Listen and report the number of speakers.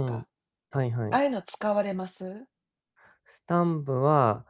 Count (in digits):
2